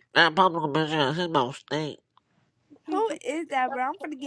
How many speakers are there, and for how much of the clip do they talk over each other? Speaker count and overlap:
2, no overlap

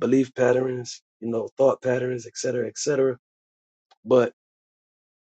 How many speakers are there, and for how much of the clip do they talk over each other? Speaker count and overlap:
1, no overlap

